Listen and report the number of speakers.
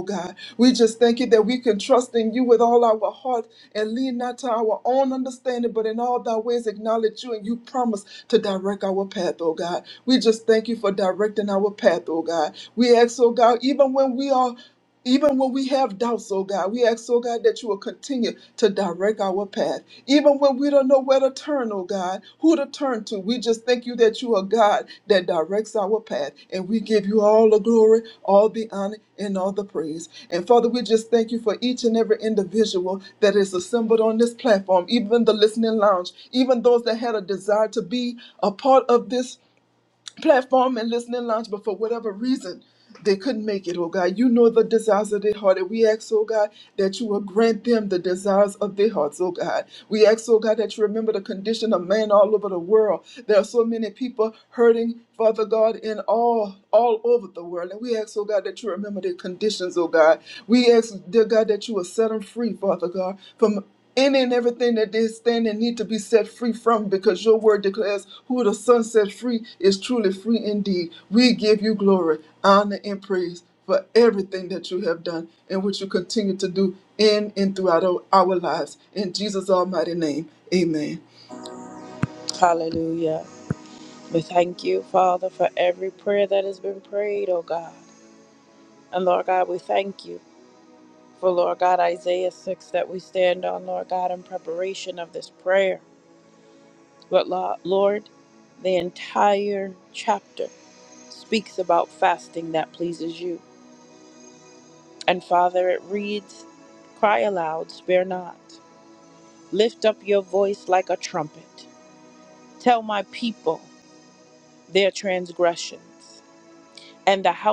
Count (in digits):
2